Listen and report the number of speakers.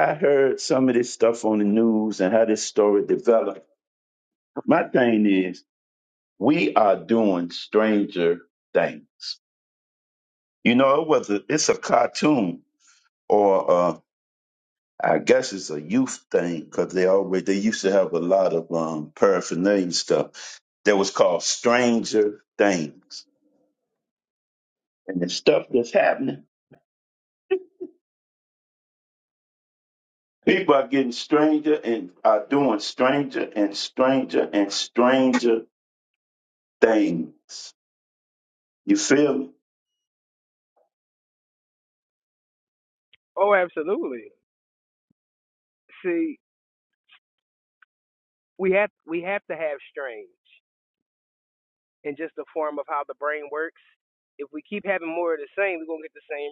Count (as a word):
two